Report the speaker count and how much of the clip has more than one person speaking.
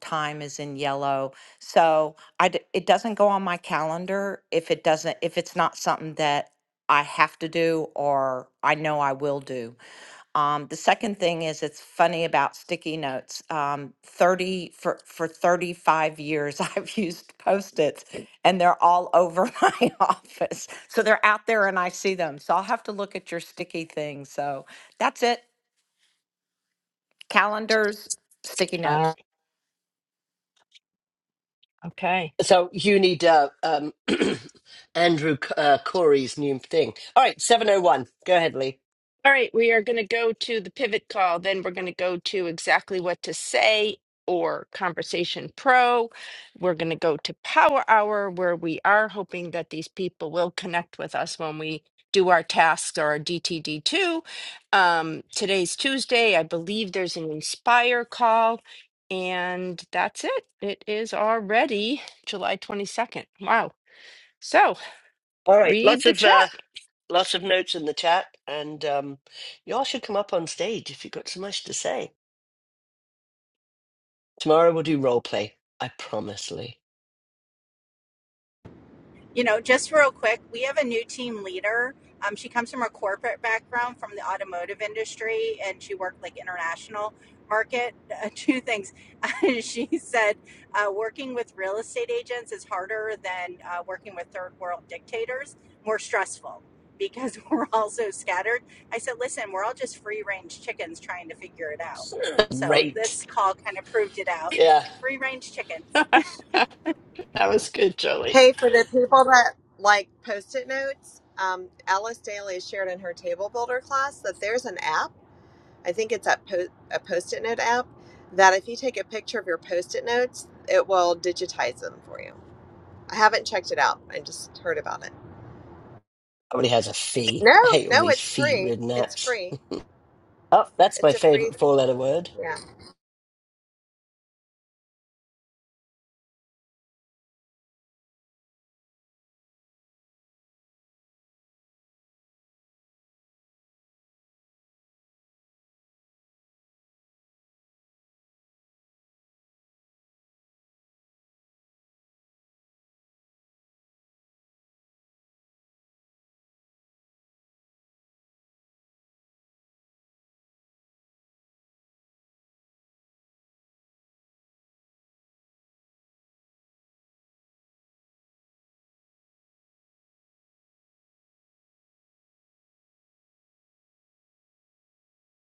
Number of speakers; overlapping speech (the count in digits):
5, about 2%